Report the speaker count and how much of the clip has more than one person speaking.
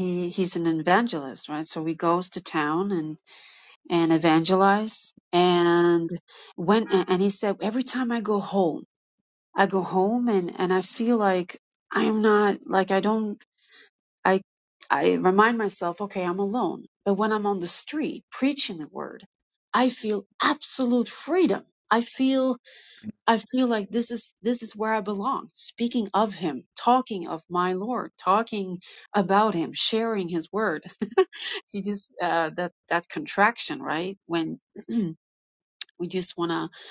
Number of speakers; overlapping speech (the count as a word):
one, no overlap